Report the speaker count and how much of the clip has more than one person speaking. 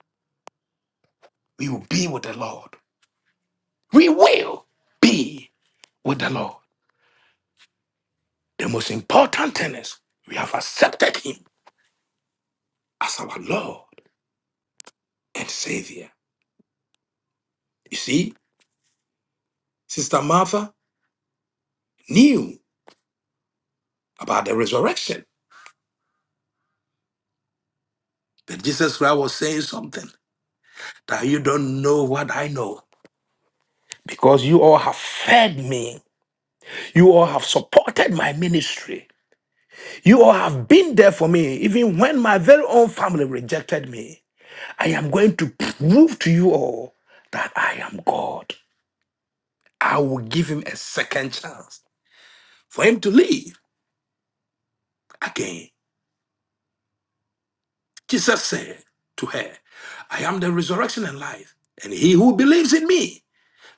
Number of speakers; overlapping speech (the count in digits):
1, no overlap